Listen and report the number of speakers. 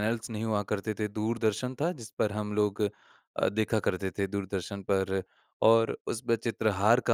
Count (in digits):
1